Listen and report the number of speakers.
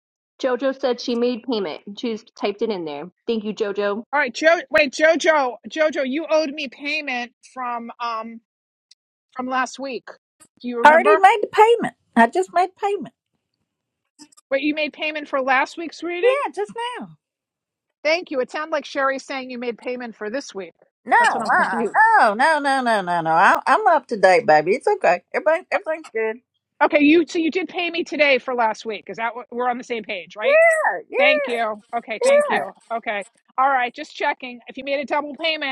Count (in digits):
3